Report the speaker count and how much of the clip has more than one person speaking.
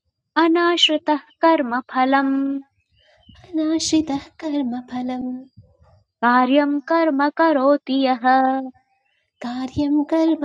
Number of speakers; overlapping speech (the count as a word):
two, no overlap